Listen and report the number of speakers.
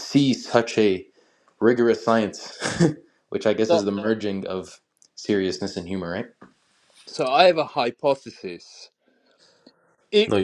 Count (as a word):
two